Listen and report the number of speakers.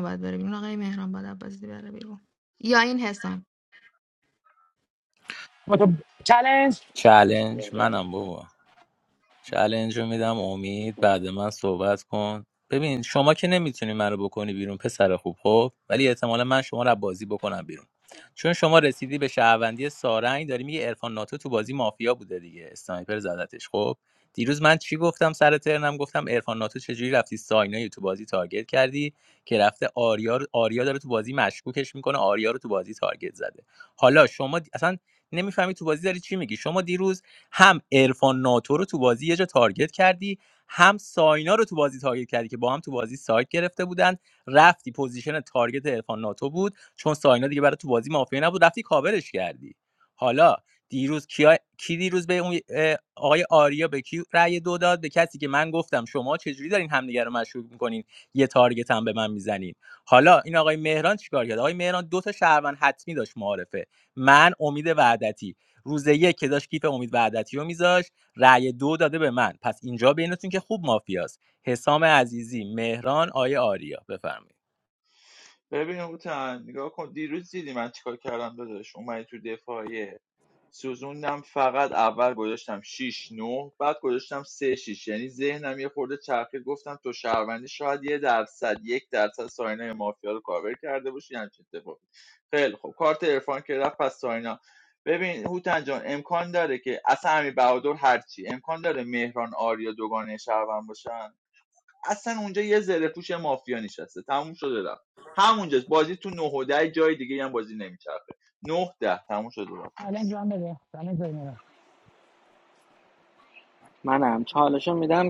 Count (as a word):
five